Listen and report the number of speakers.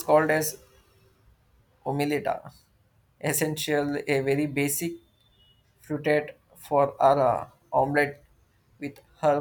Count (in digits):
1